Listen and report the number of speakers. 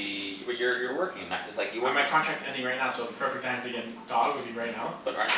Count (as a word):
two